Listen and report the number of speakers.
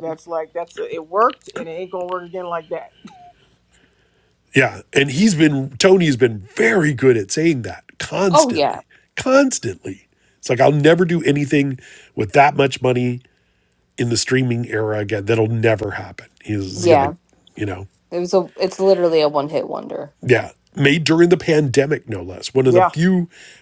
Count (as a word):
three